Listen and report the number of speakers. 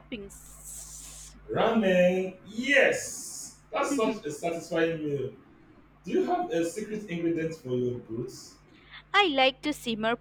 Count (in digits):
2